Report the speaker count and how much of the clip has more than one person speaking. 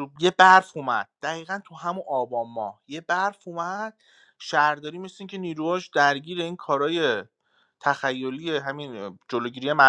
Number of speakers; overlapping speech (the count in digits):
1, no overlap